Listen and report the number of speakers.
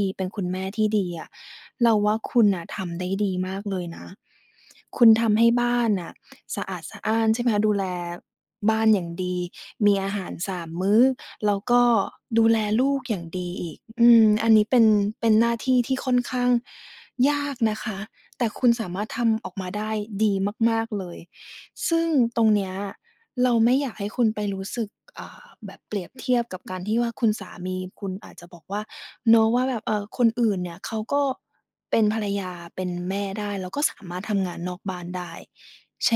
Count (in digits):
1